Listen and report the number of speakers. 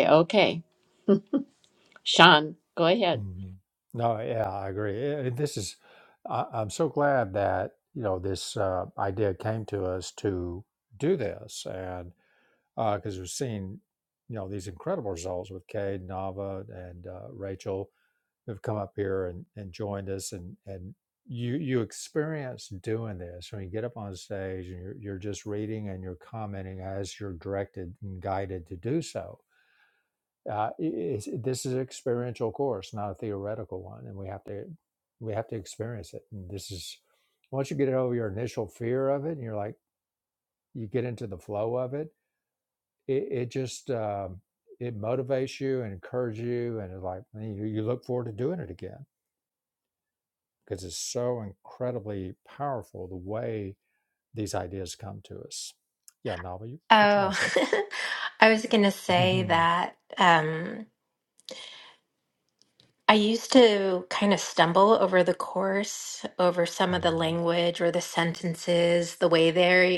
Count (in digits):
3